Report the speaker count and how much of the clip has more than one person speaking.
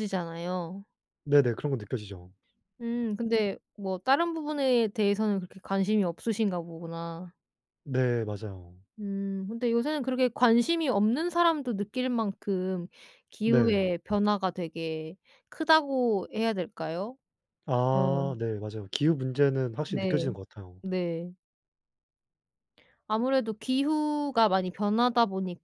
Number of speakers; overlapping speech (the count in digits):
2, about 4%